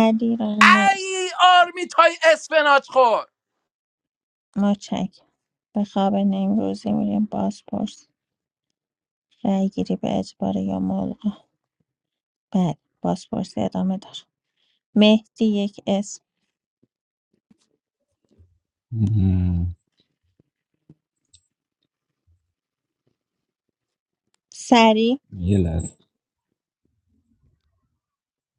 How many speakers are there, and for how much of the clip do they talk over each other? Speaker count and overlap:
three, under 1%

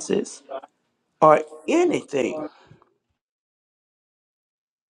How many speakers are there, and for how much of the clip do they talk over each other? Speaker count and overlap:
one, no overlap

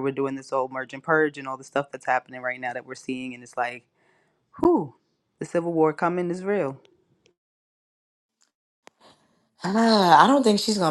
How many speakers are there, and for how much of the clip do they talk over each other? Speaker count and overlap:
two, no overlap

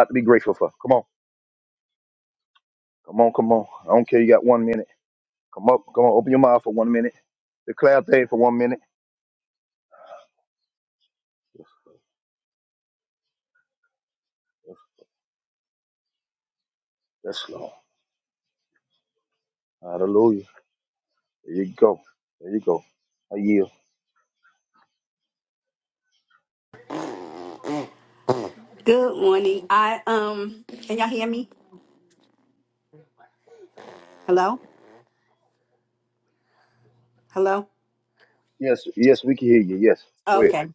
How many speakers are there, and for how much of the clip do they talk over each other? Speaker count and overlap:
two, under 1%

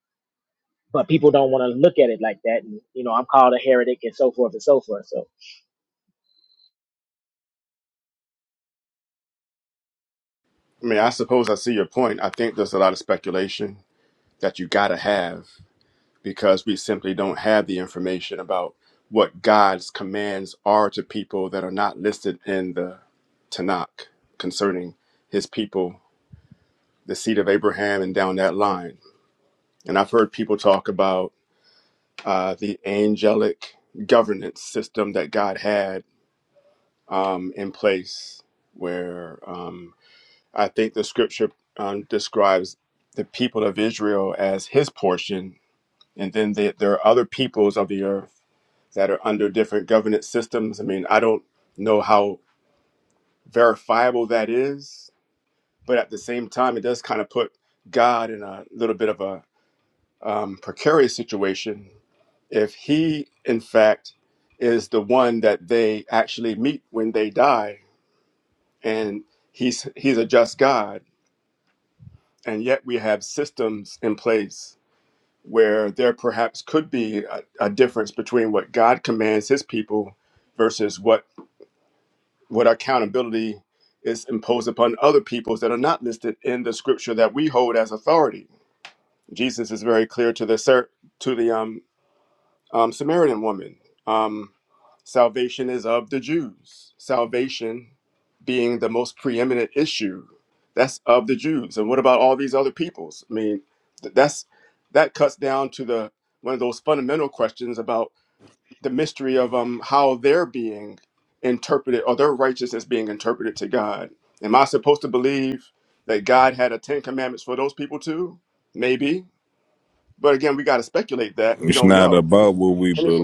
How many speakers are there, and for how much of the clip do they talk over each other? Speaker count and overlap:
three, about 1%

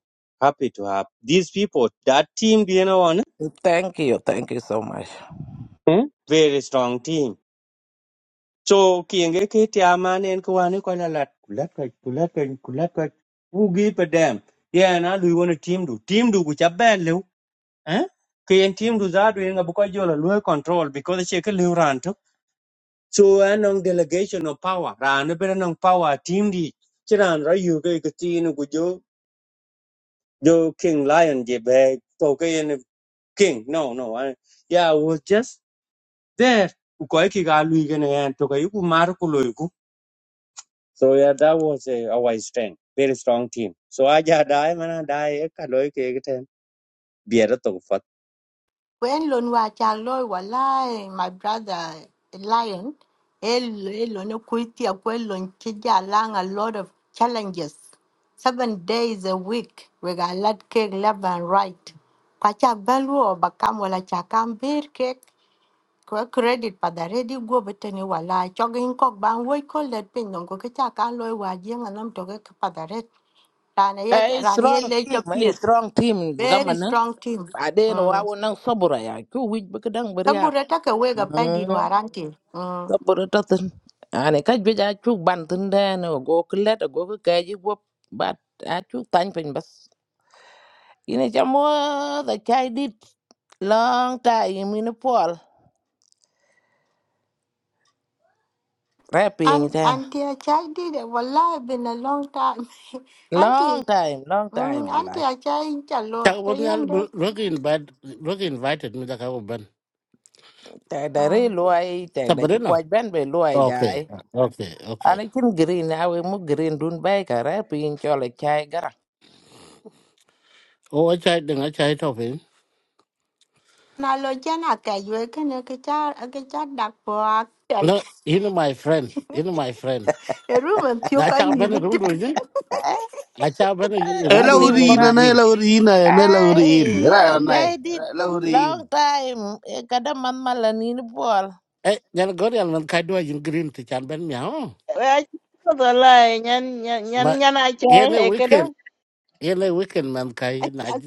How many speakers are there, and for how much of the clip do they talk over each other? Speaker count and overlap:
six, about 8%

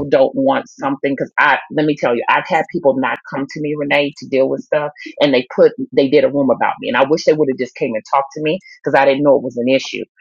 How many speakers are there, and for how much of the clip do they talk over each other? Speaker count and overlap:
one, no overlap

